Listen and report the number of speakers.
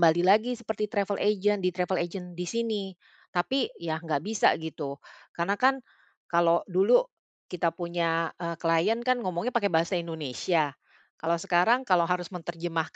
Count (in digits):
1